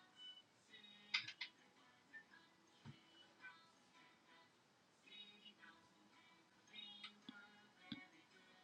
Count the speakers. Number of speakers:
0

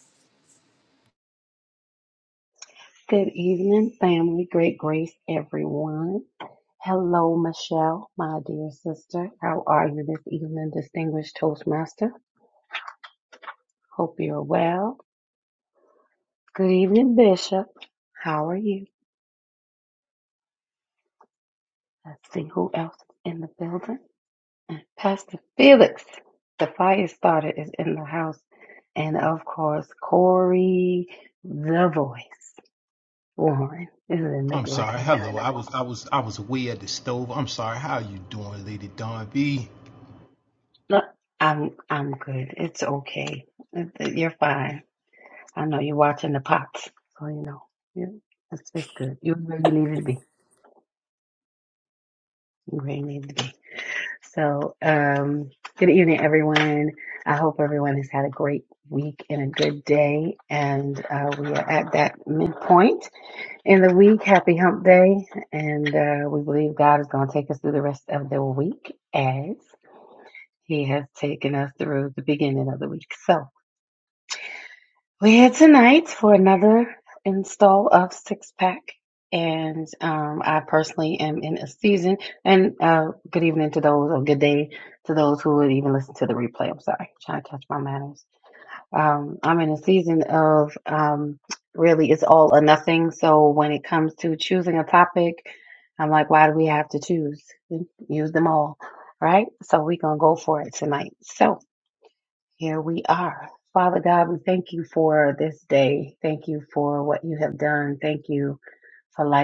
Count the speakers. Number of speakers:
2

